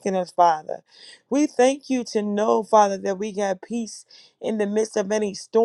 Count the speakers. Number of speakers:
one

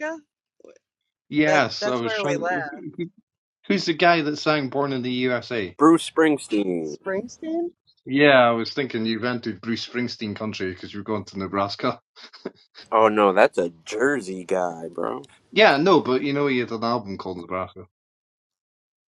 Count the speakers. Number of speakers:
three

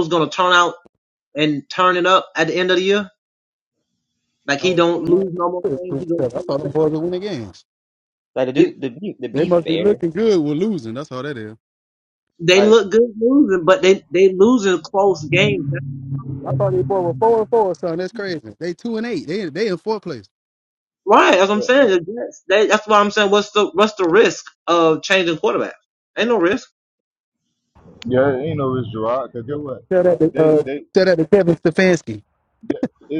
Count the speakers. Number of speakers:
four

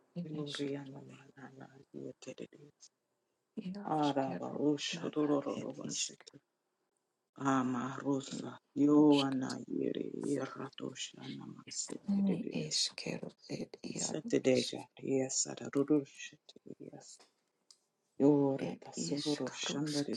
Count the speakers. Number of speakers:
two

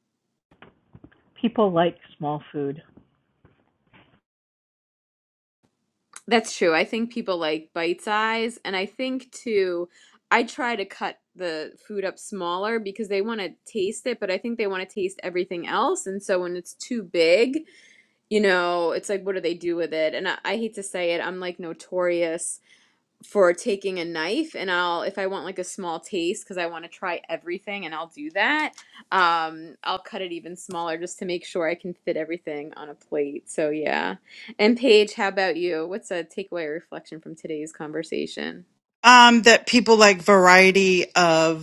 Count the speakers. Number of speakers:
three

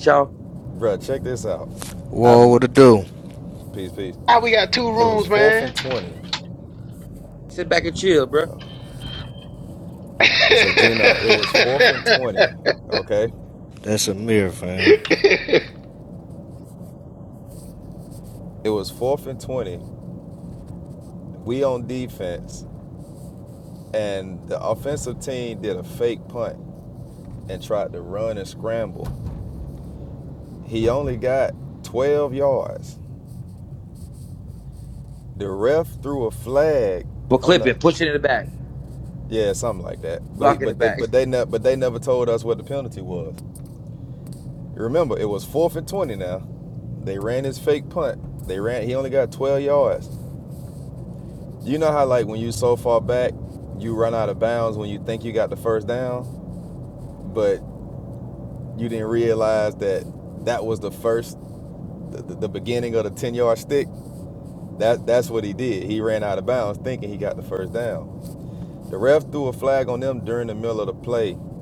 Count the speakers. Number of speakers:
four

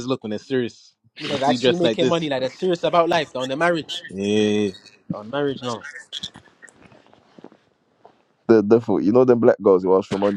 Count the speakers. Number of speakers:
three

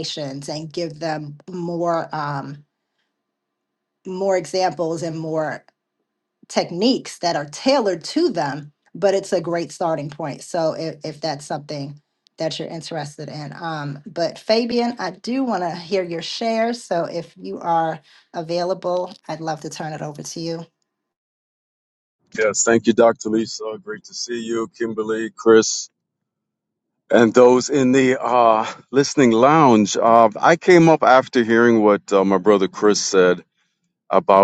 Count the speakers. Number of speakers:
two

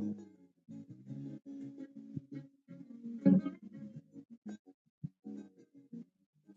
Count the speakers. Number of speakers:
zero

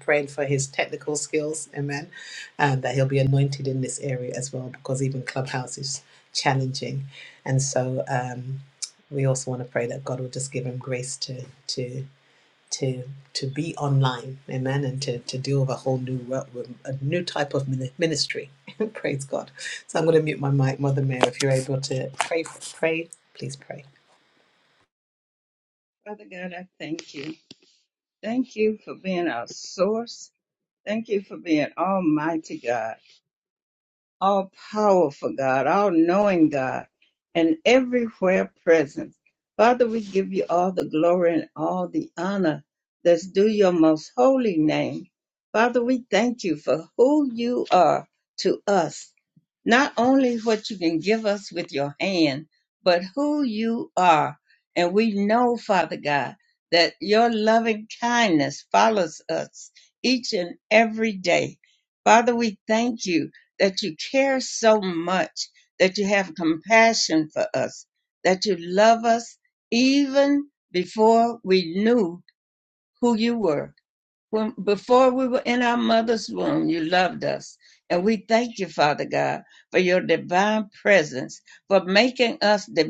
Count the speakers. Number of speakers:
two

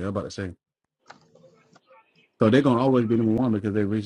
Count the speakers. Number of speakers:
one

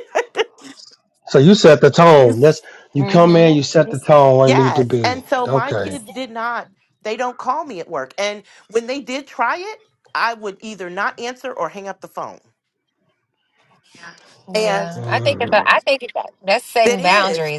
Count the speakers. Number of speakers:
three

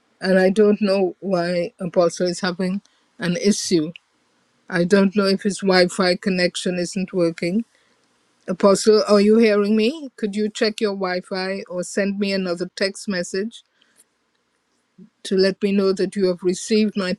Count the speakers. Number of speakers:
one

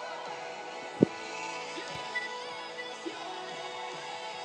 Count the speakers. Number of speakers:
zero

